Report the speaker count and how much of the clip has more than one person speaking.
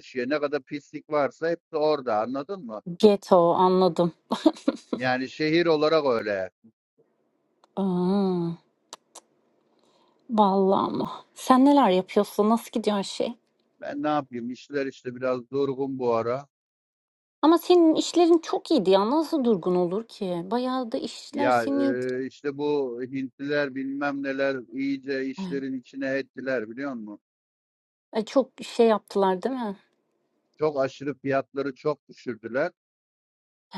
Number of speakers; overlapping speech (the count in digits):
2, about 2%